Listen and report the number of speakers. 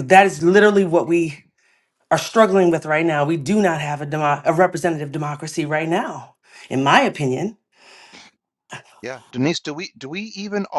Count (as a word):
two